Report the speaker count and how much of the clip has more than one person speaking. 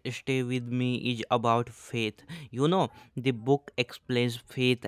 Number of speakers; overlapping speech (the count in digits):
1, no overlap